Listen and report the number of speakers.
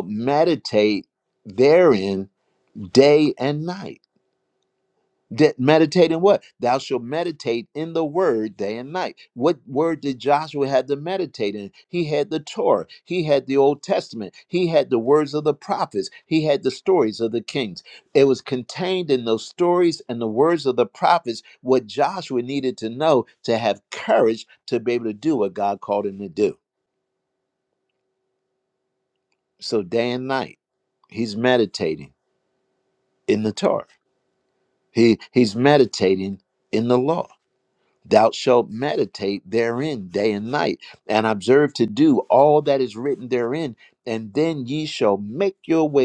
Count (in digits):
1